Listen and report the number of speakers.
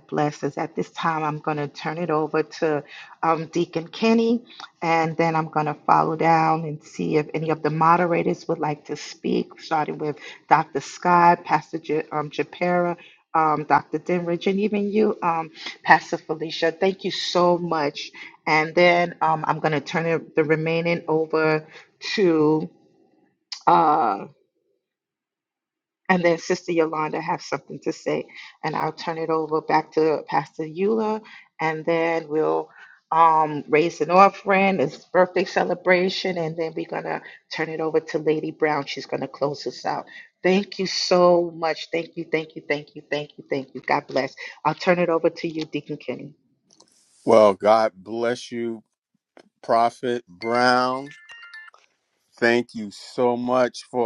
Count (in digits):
2